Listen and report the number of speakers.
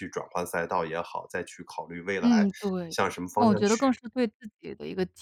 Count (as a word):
two